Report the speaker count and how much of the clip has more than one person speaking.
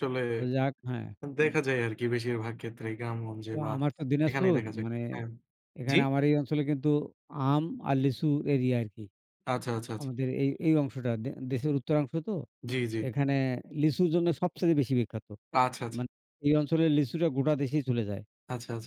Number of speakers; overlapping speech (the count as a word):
two, about 7%